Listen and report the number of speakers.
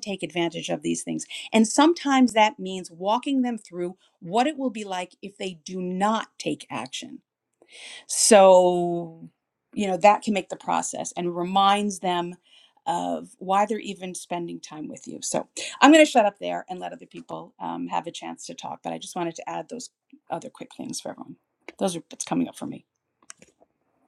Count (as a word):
one